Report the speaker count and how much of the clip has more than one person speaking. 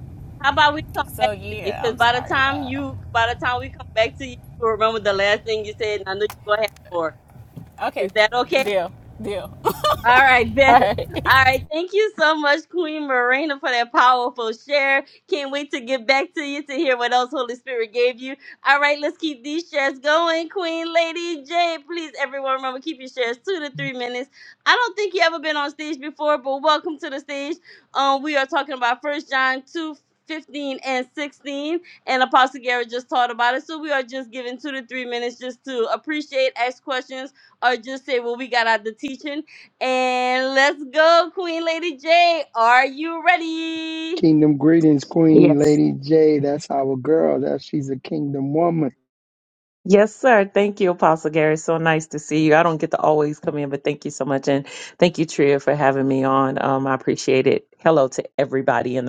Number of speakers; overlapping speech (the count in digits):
4, about 4%